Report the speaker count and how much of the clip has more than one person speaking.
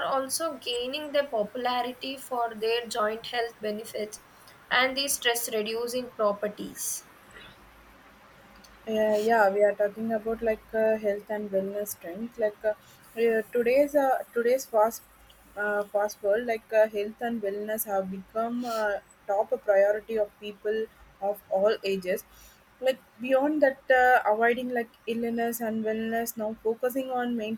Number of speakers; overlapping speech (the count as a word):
two, no overlap